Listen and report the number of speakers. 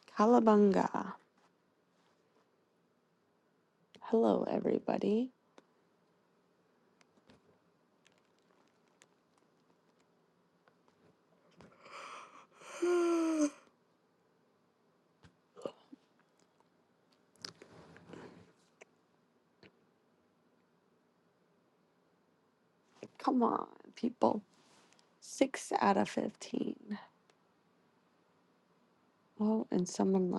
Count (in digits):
1